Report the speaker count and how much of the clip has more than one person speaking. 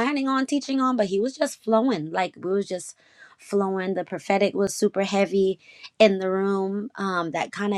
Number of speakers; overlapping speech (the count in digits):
1, no overlap